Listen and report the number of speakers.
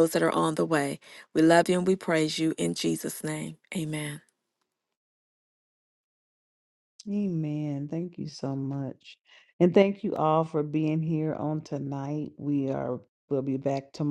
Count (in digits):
2